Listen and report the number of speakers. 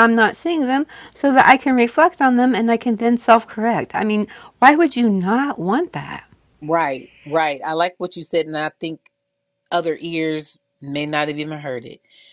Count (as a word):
two